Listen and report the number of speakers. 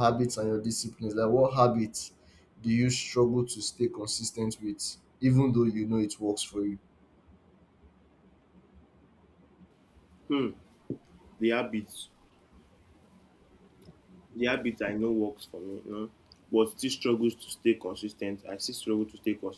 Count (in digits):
2